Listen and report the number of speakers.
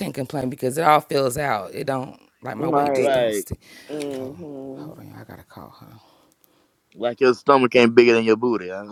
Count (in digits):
3